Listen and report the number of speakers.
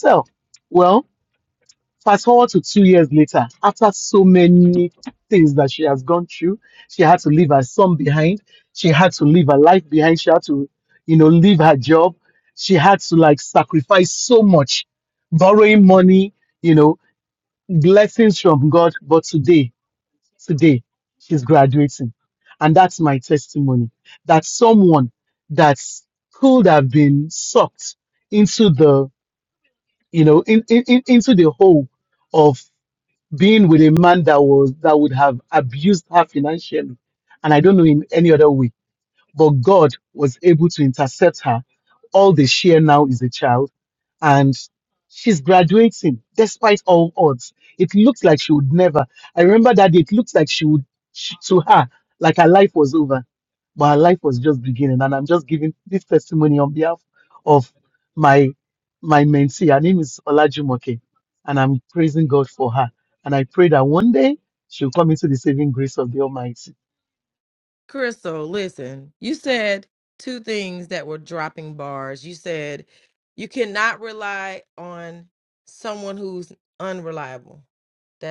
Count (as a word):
two